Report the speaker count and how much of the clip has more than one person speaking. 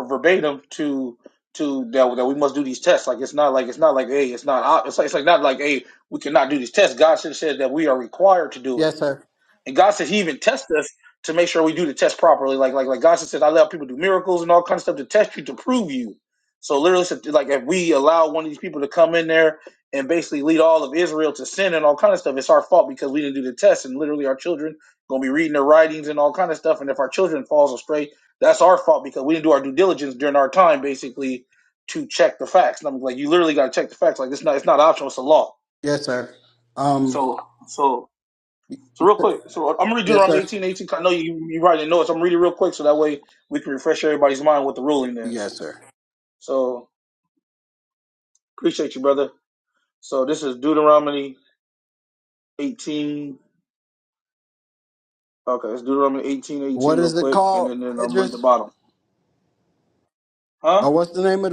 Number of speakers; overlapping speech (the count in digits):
2, about 4%